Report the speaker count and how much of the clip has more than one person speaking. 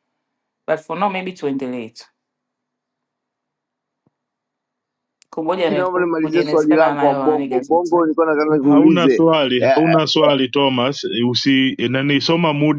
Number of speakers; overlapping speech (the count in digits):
3, about 25%